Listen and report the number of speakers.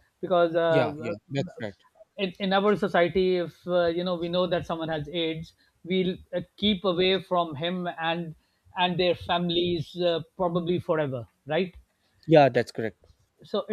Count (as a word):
two